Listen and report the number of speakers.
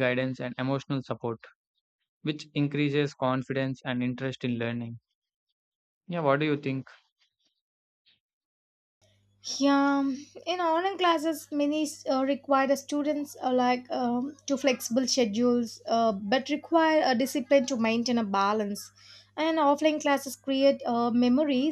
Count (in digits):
2